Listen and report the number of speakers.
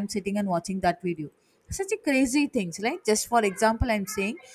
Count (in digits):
1